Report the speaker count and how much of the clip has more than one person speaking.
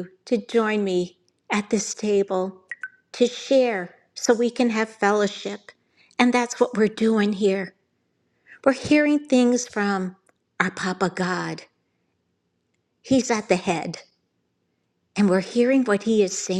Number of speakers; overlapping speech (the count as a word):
one, no overlap